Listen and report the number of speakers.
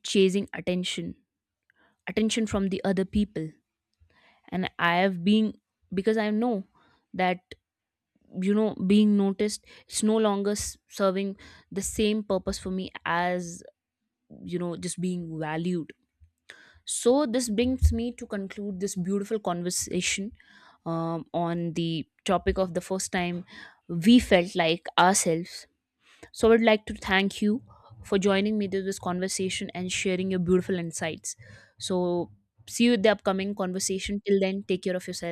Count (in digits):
1